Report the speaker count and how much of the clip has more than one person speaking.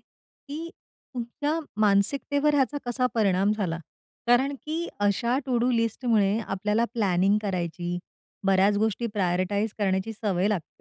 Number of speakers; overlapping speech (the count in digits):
1, no overlap